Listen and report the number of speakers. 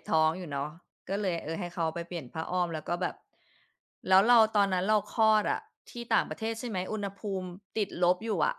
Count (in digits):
1